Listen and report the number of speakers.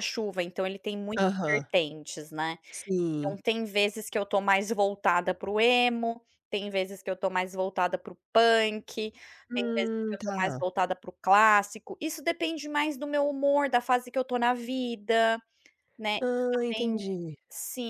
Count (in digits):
2